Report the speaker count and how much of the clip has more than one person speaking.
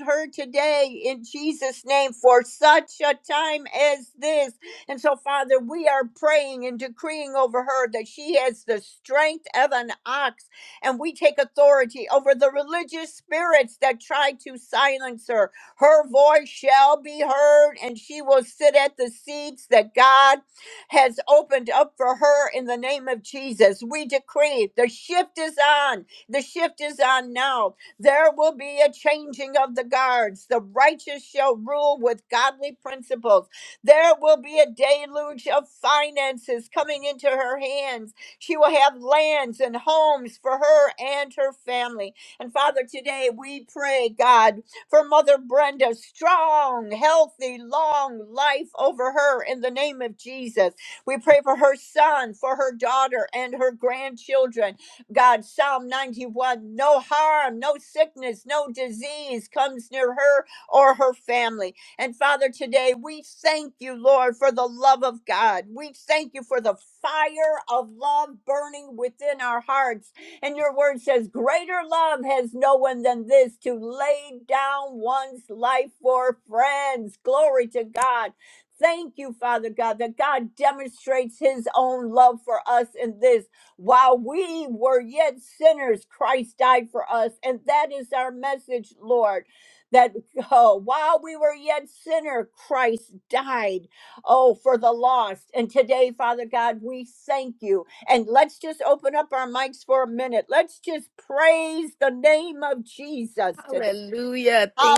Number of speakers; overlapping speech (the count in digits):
2, under 1%